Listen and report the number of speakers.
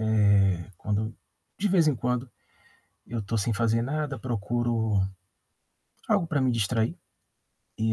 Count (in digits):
1